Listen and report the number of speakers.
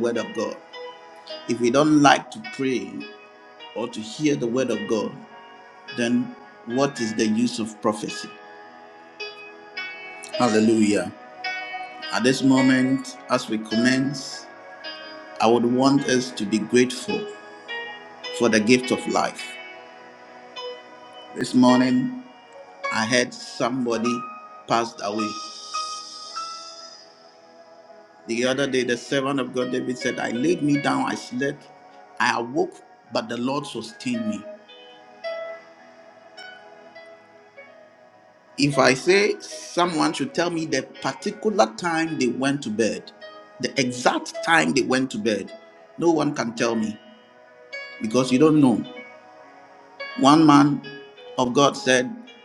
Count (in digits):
1